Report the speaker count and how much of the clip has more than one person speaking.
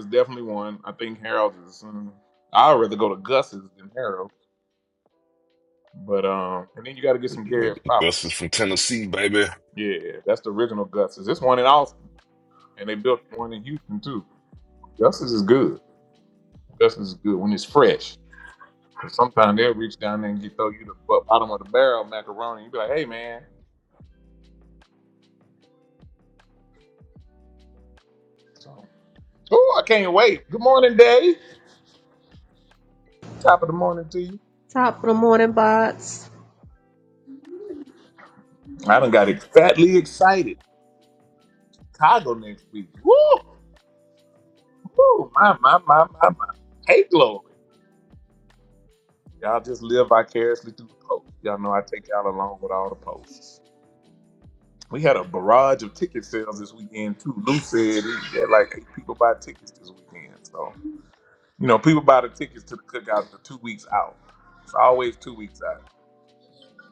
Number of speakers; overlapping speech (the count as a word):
three, about 1%